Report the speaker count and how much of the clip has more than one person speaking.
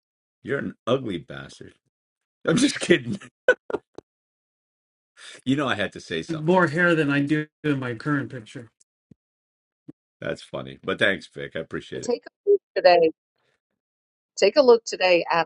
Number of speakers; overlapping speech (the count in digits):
3, about 3%